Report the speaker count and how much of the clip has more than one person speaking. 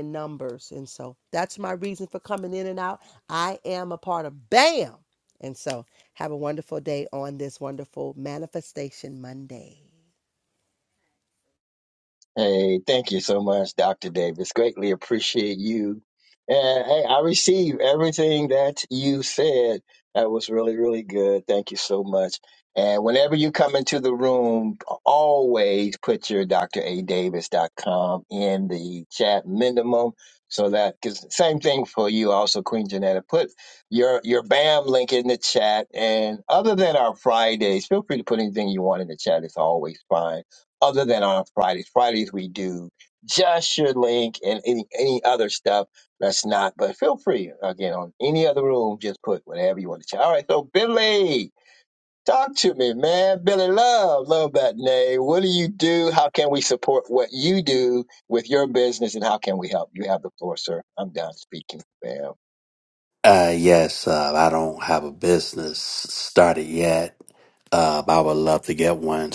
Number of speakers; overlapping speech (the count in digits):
3, no overlap